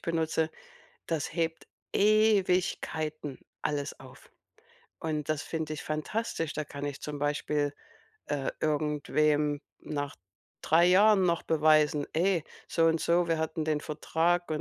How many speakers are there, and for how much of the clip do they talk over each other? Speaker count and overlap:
1, no overlap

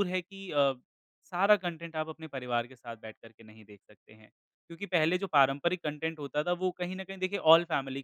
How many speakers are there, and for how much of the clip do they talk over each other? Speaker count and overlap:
1, no overlap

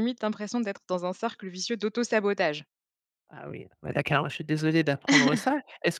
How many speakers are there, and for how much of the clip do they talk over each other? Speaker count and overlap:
2, no overlap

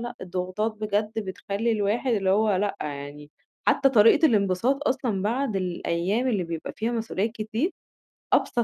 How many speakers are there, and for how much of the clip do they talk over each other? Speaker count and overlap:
1, no overlap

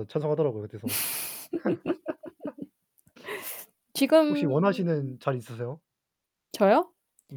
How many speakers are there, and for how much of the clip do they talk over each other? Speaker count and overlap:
2, about 11%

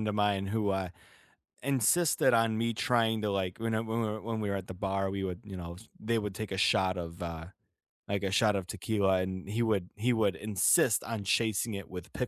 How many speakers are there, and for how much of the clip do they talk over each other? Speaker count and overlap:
1, no overlap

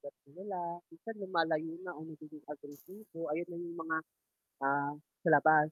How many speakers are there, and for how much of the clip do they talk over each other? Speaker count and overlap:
1, no overlap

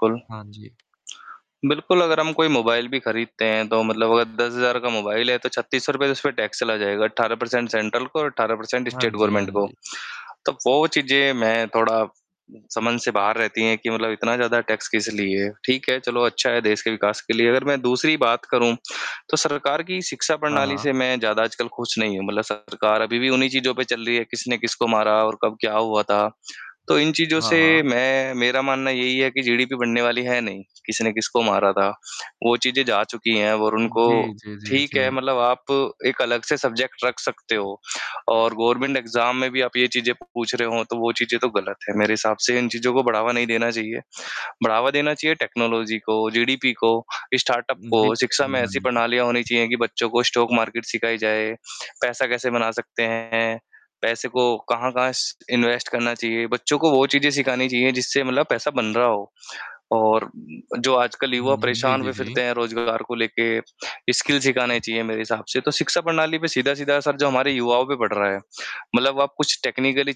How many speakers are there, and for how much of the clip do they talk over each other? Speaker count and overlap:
2, about 7%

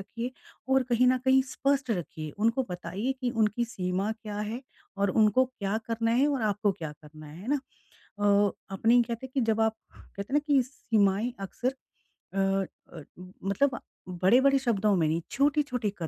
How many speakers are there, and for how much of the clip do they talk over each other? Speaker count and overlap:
1, no overlap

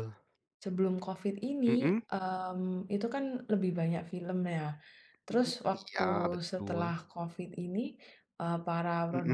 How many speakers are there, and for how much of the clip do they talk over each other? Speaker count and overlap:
2, about 19%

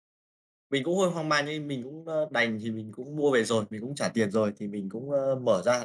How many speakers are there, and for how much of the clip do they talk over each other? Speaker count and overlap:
1, no overlap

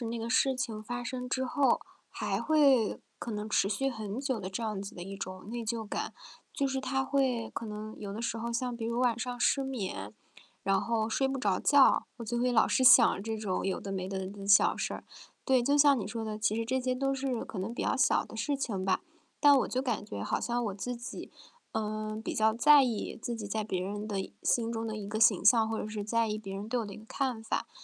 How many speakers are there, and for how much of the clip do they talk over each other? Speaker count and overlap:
1, no overlap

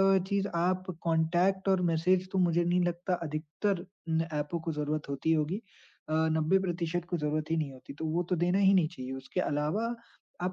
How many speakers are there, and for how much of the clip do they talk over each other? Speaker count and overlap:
1, no overlap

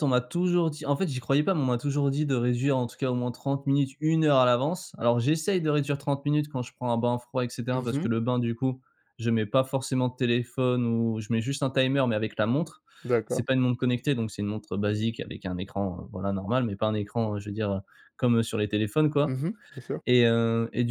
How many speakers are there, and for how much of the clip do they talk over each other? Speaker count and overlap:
2, about 2%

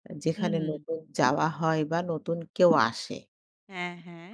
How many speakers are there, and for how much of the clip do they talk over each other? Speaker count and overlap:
2, about 11%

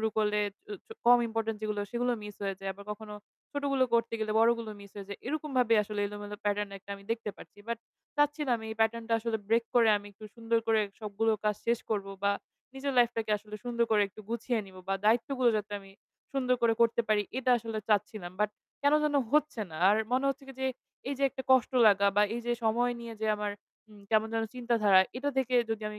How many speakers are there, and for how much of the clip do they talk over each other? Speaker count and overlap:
1, no overlap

